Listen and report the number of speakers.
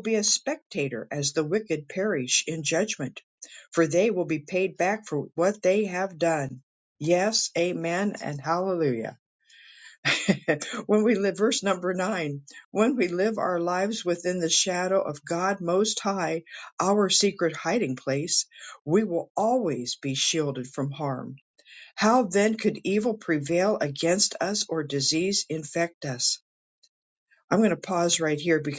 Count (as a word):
one